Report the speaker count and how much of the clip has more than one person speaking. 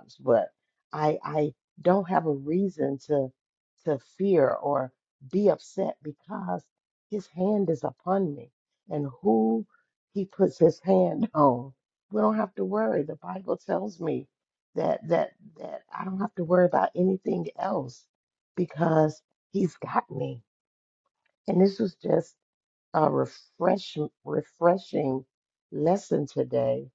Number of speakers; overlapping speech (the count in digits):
1, no overlap